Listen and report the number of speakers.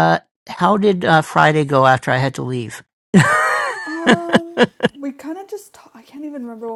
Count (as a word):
two